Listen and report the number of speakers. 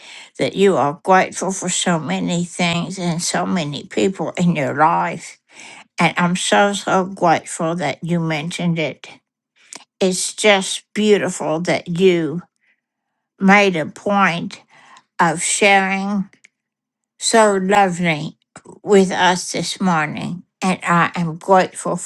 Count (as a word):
one